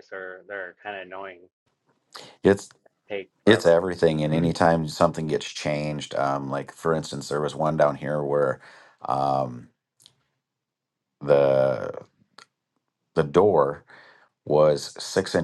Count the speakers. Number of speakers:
2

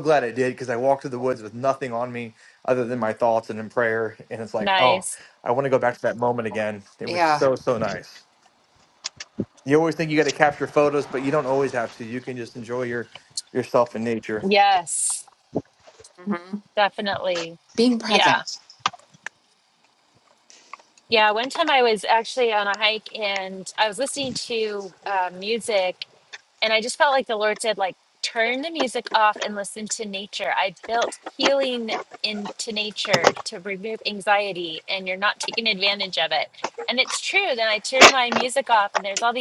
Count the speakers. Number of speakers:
3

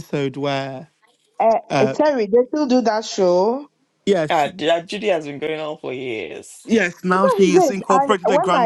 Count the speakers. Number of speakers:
3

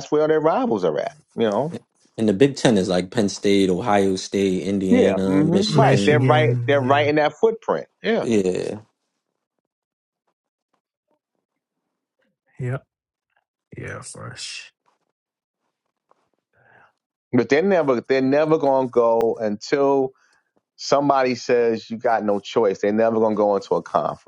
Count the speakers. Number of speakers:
3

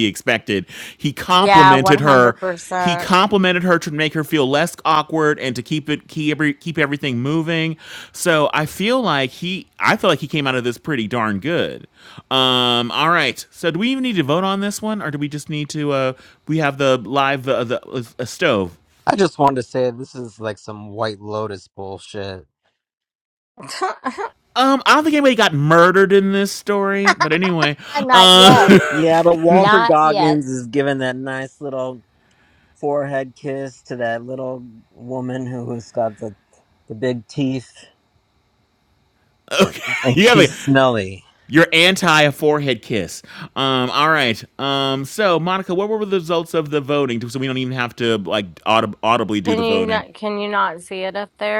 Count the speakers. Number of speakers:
3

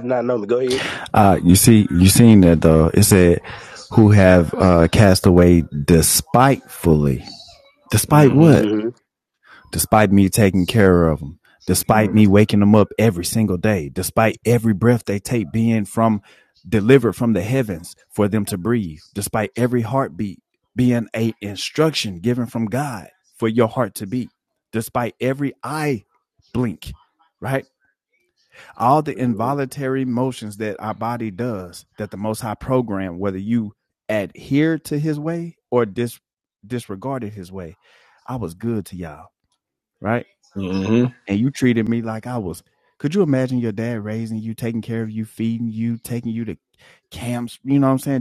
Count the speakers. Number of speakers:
3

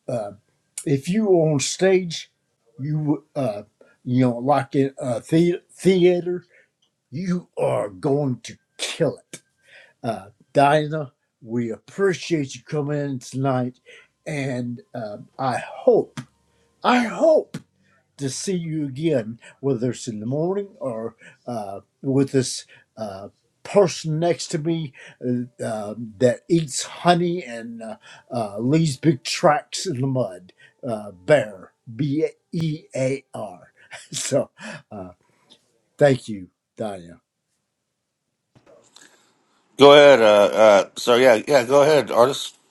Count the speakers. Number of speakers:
2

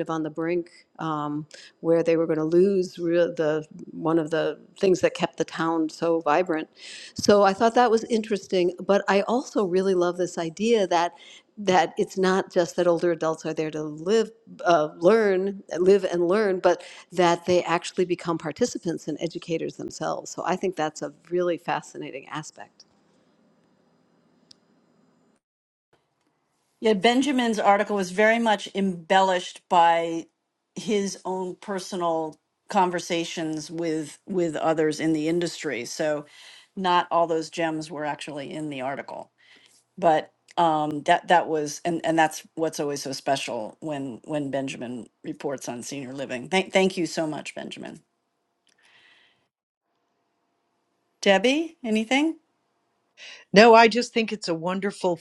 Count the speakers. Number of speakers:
3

